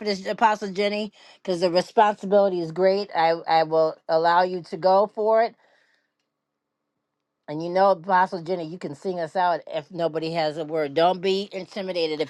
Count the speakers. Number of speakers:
one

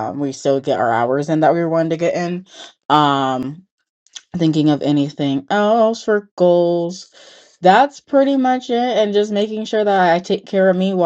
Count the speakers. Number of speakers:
one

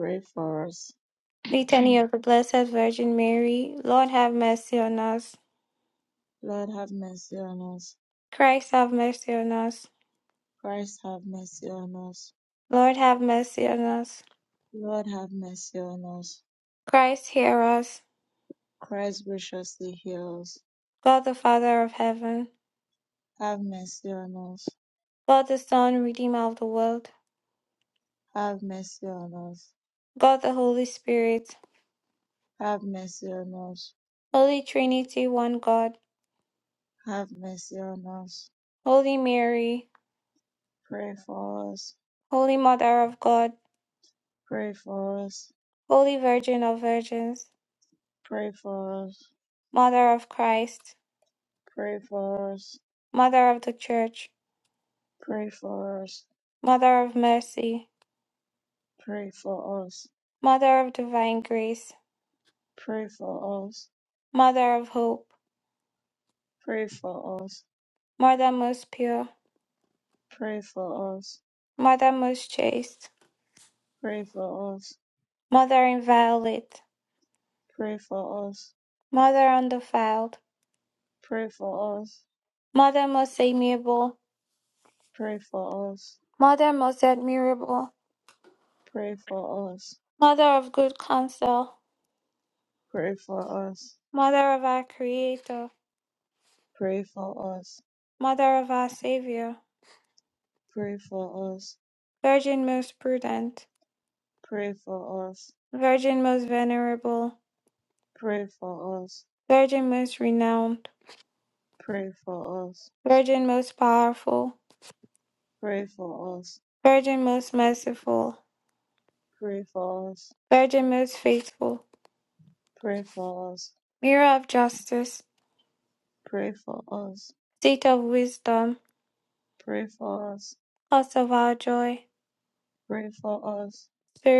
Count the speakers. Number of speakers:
two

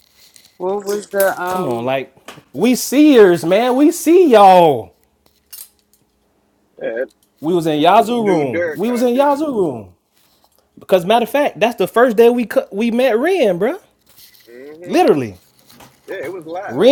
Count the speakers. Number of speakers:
three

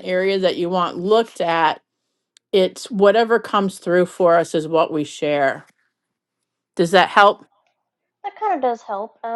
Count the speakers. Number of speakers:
two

